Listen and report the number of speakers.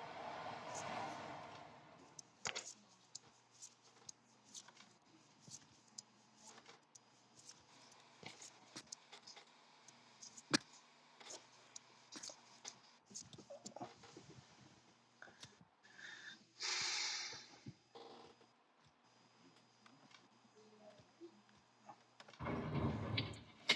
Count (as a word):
zero